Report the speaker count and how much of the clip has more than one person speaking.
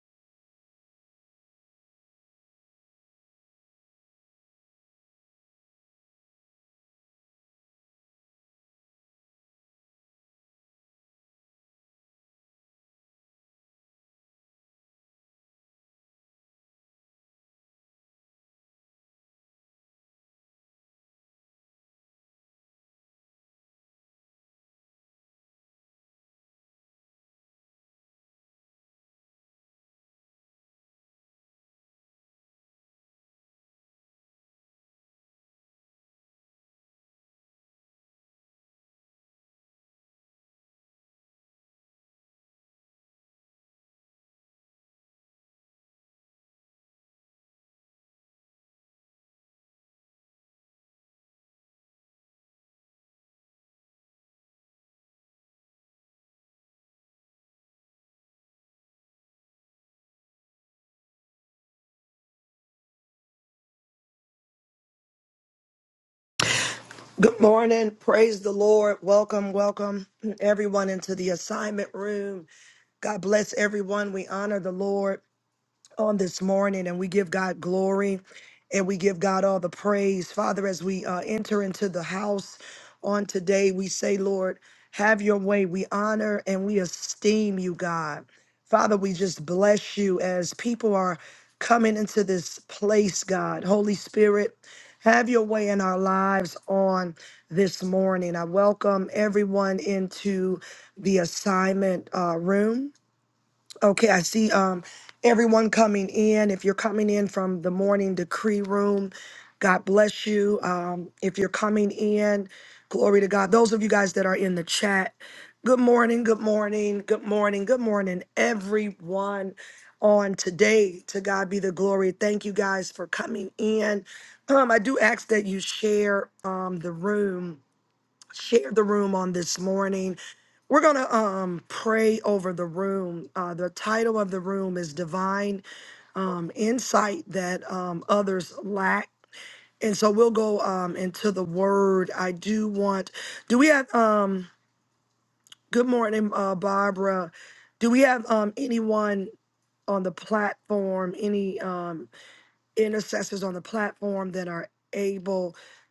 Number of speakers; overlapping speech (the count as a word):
one, no overlap